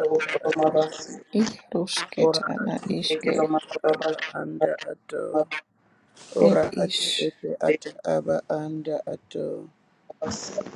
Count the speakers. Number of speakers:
3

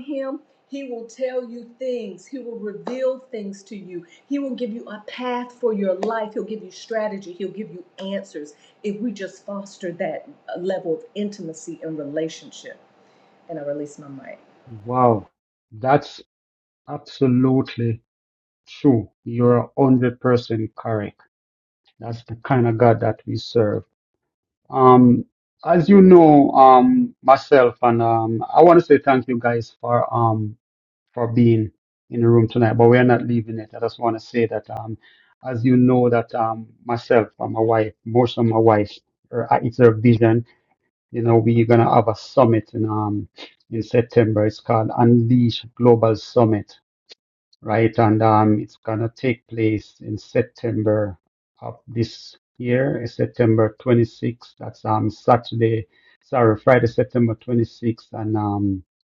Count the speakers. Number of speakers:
2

